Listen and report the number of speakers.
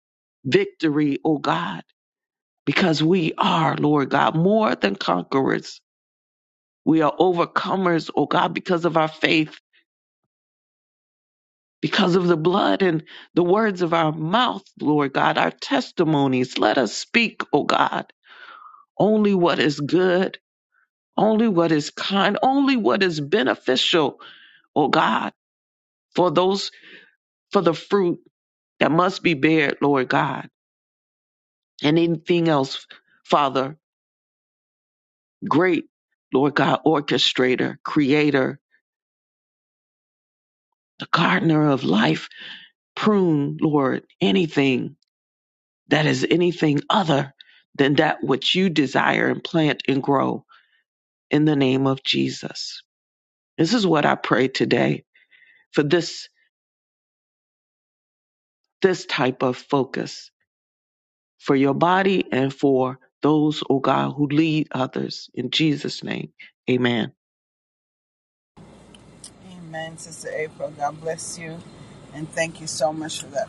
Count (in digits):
2